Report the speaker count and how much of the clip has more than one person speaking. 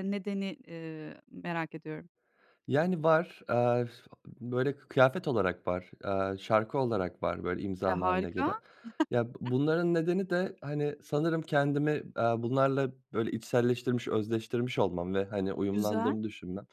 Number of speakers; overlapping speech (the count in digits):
2, about 7%